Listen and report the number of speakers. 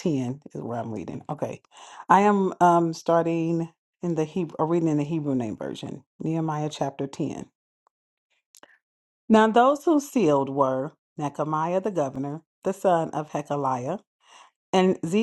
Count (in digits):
1